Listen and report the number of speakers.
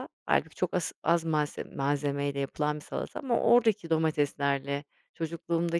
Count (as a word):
one